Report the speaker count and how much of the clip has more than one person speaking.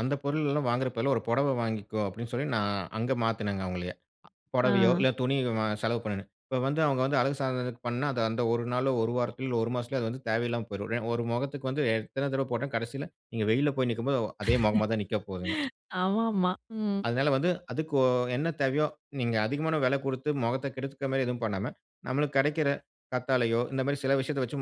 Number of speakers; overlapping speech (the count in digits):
2, about 2%